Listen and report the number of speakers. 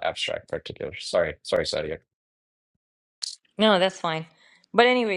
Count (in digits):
2